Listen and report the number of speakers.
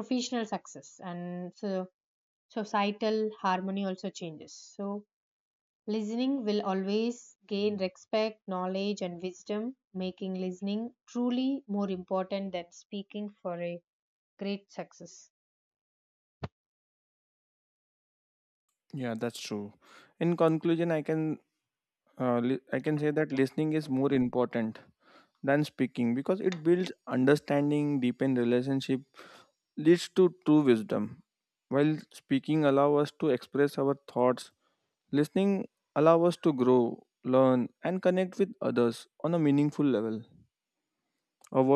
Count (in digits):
2